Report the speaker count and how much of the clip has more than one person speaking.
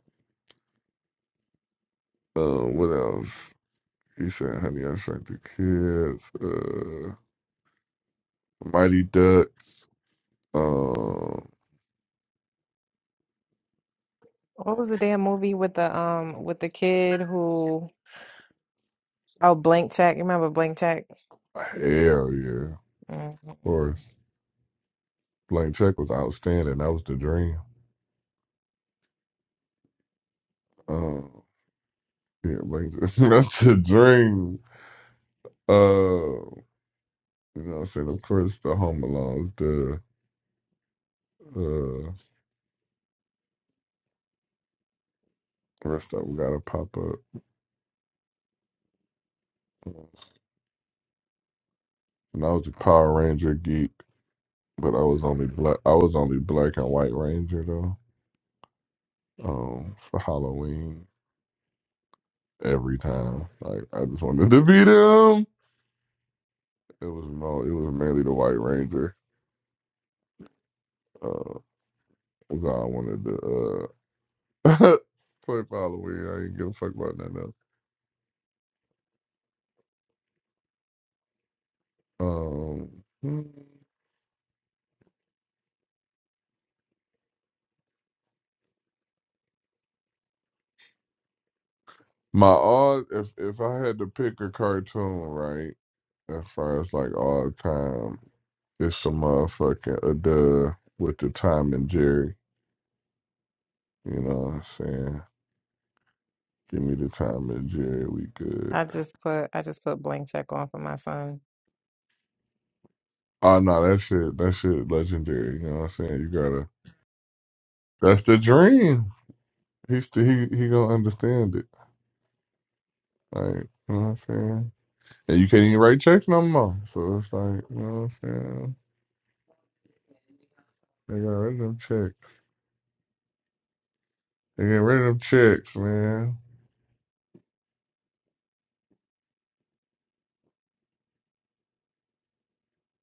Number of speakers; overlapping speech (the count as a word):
two, under 1%